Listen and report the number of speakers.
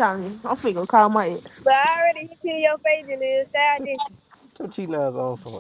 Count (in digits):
3